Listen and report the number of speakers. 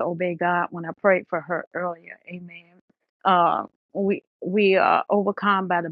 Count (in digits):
1